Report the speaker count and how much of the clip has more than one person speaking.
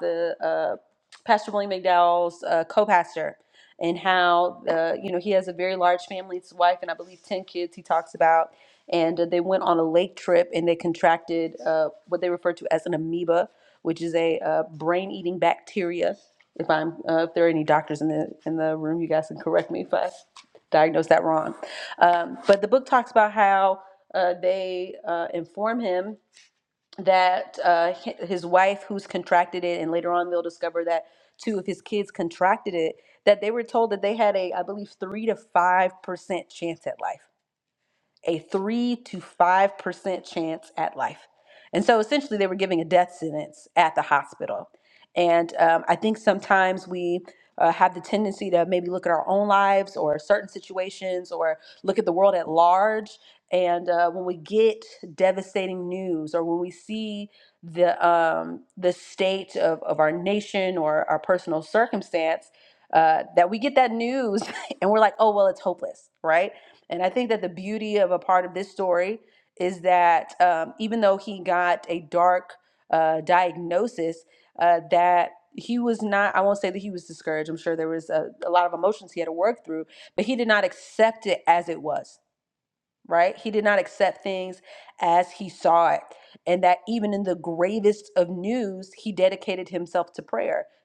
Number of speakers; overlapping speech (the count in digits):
1, no overlap